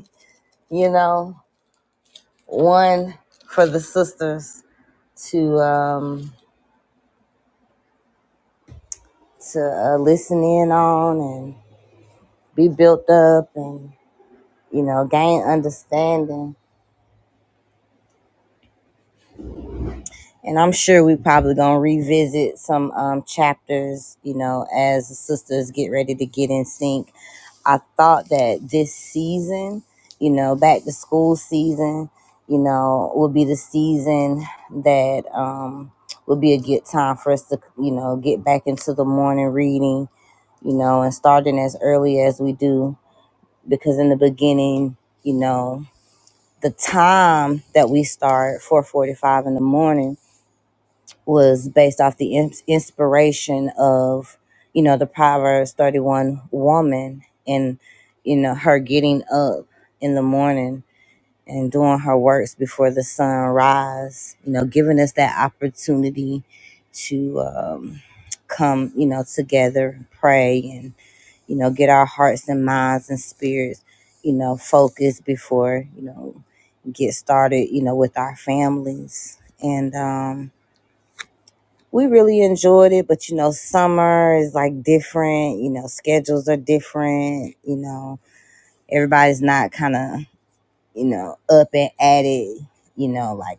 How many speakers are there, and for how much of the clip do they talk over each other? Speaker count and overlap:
1, no overlap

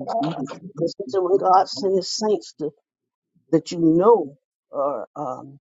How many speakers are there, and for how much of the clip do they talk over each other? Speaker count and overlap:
1, no overlap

